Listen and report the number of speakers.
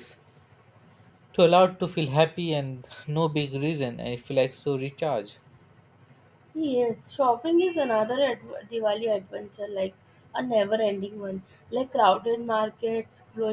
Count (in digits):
2